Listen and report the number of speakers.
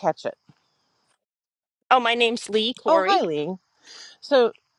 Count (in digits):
2